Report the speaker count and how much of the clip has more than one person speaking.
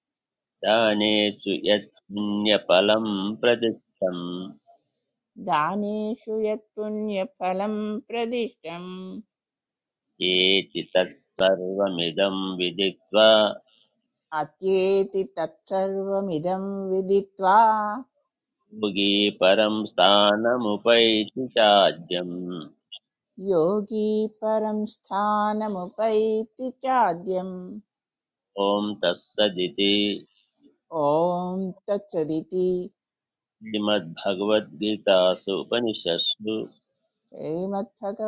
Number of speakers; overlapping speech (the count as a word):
two, no overlap